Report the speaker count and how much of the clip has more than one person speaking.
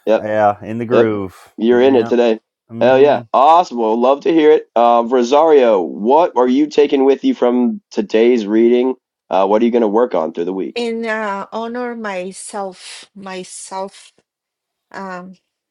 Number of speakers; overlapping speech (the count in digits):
3, about 8%